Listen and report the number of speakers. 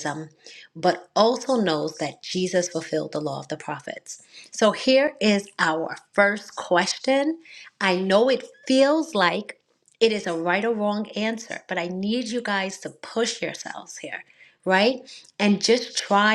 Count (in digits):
1